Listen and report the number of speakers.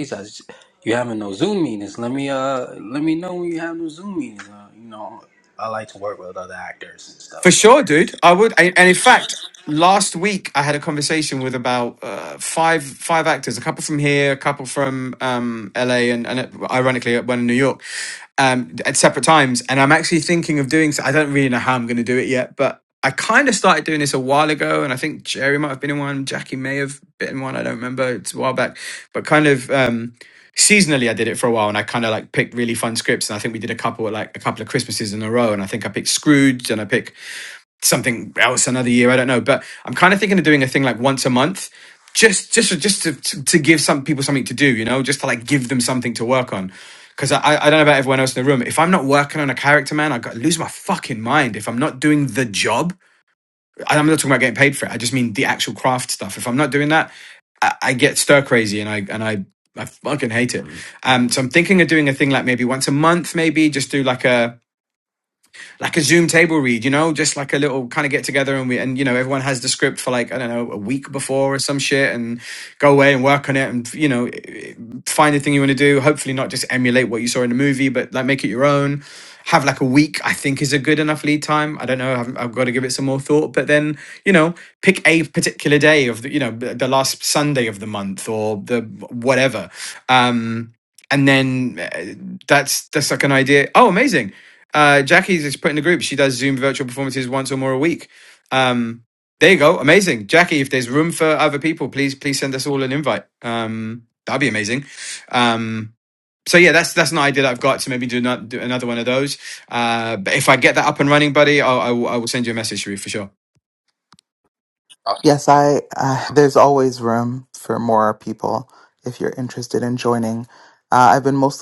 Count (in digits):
3